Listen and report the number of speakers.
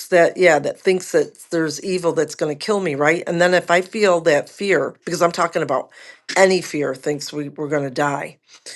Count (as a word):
one